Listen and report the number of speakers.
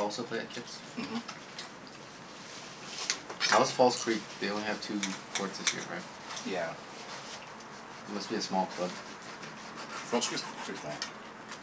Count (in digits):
2